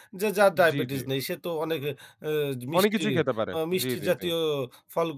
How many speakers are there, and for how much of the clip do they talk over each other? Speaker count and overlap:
two, about 29%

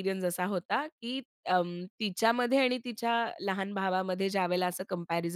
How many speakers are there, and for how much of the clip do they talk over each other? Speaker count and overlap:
one, no overlap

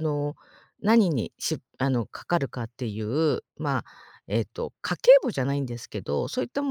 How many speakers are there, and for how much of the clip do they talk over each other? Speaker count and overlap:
one, no overlap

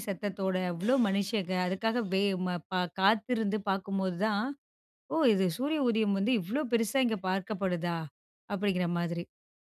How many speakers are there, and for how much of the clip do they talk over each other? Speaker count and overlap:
one, no overlap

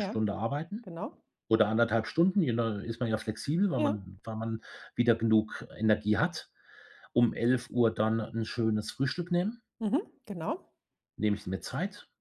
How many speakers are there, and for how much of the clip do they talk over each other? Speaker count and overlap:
two, about 3%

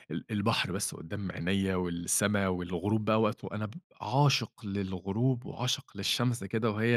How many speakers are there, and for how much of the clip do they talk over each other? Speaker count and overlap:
one, no overlap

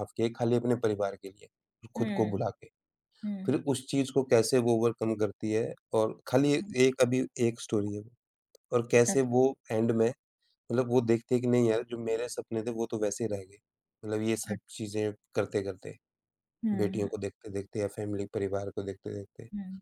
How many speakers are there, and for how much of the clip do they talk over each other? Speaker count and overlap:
two, about 6%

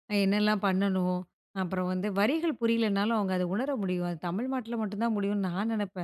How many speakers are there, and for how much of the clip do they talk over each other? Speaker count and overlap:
one, no overlap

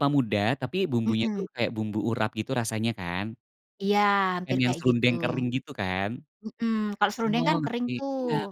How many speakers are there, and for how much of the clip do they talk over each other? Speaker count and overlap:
two, about 20%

